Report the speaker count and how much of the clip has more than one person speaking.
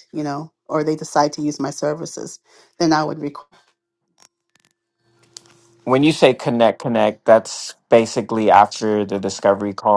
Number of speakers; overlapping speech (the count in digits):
2, no overlap